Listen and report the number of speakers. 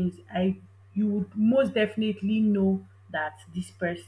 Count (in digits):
1